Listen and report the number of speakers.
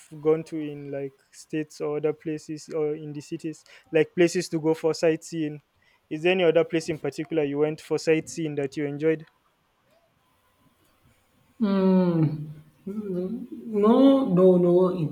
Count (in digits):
2